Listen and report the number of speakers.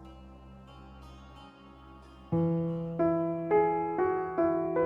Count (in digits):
0